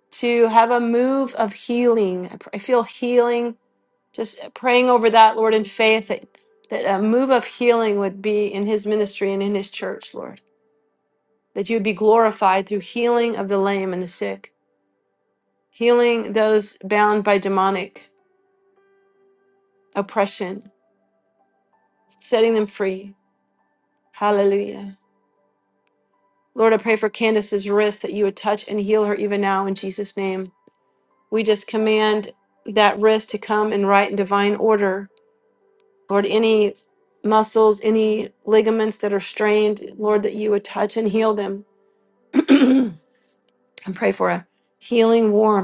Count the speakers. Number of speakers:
one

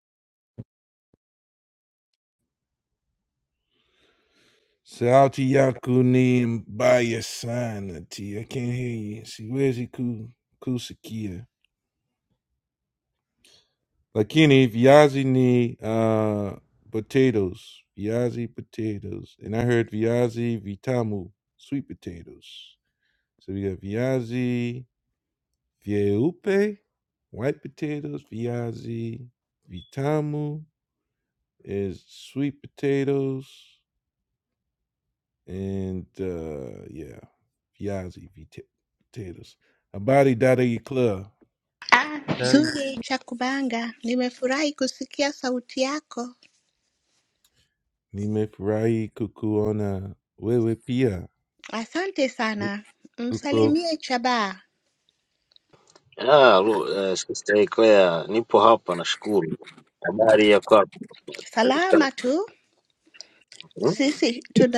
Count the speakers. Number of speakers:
three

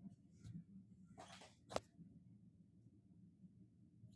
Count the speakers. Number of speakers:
zero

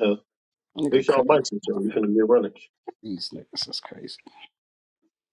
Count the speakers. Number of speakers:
two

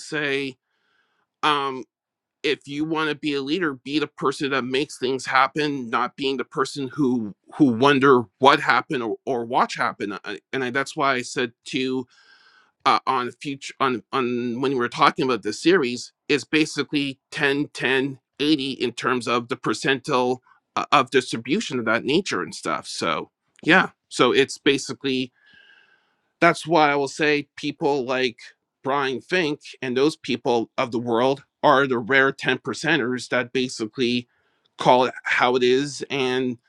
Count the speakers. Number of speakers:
one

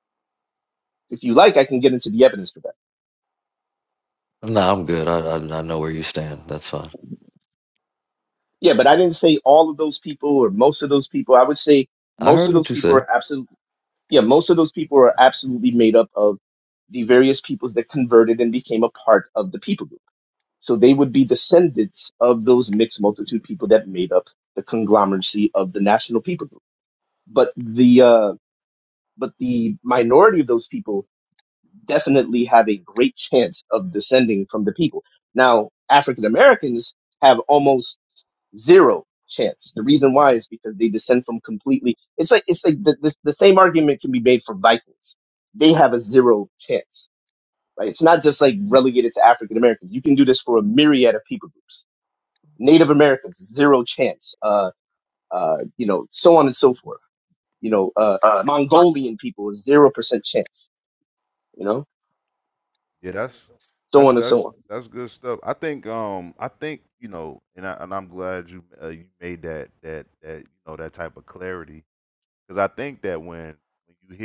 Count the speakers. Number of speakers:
three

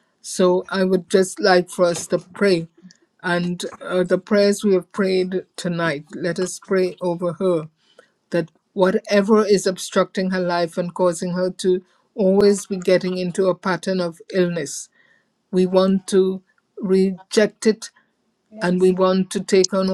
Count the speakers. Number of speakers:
one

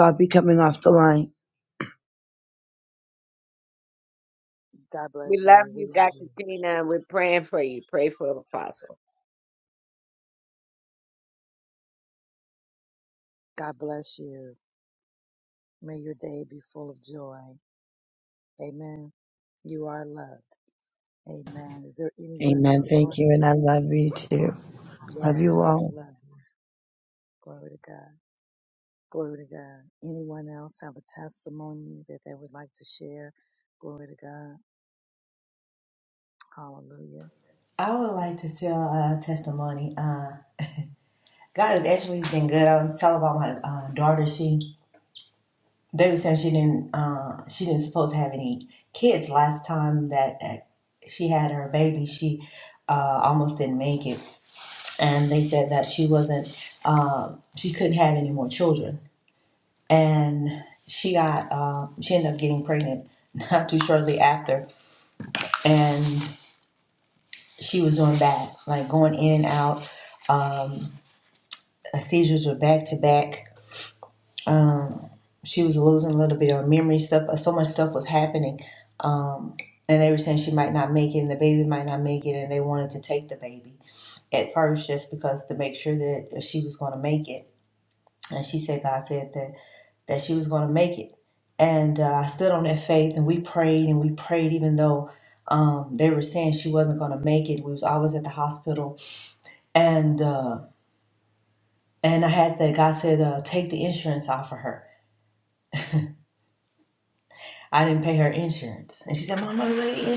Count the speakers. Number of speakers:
four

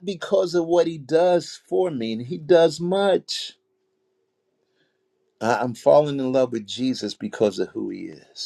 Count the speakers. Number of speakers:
one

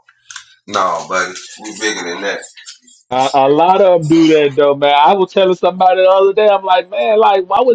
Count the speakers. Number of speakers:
two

